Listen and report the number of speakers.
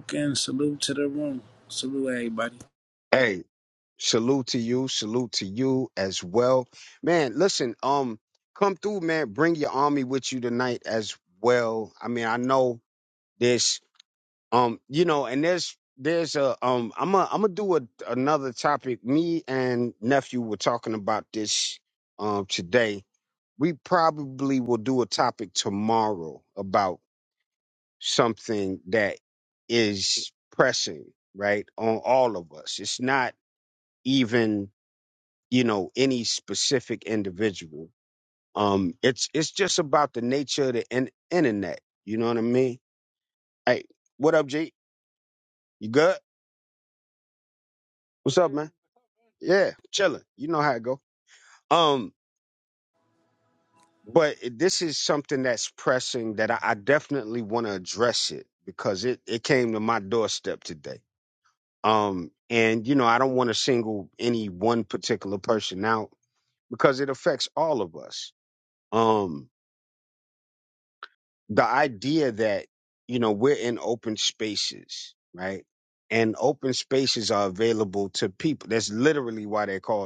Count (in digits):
2